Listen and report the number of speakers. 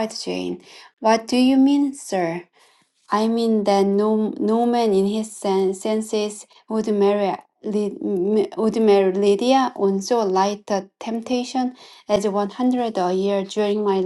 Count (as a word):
one